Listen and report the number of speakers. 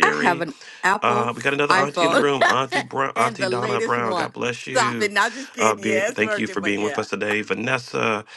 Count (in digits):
2